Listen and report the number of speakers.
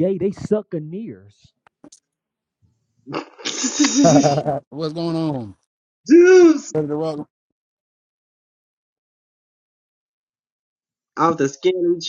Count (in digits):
3